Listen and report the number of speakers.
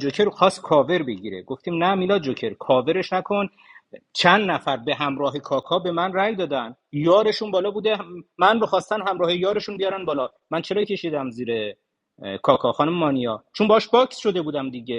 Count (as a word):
one